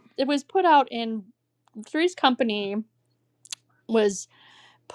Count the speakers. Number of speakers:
one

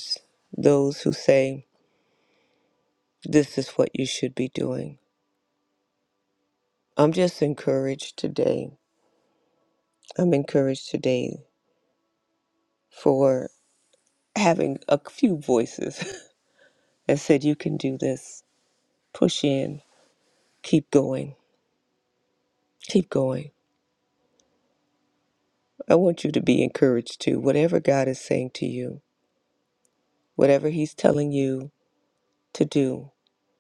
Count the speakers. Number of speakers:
one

